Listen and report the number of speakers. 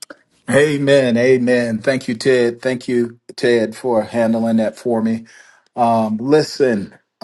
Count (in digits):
1